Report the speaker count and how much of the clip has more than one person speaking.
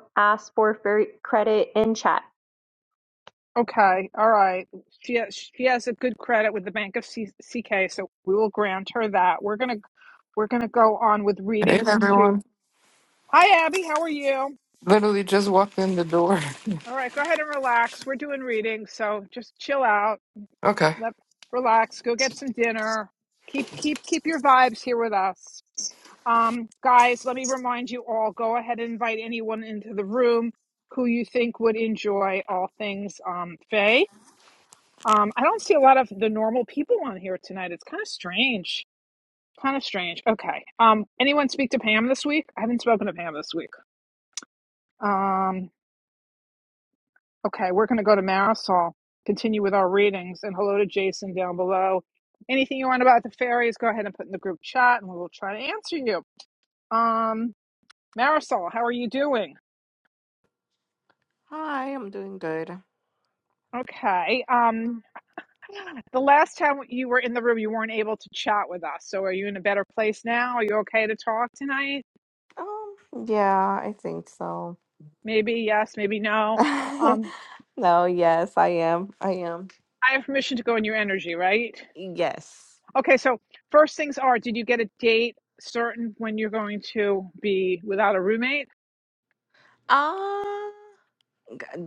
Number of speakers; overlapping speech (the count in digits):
4, about 1%